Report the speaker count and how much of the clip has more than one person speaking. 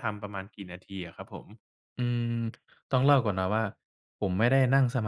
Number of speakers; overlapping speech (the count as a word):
two, no overlap